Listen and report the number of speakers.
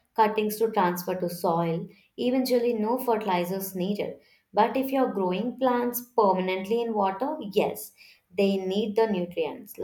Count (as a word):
one